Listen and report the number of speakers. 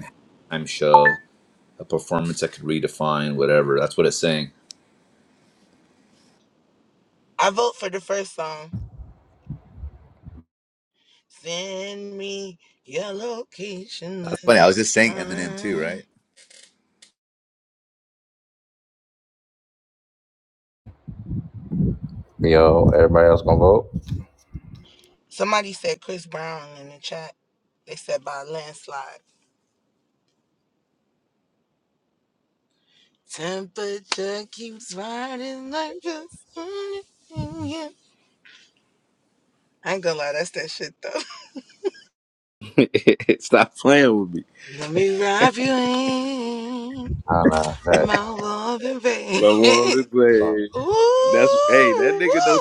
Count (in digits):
4